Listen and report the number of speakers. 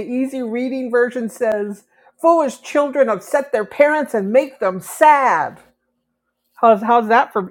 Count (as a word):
one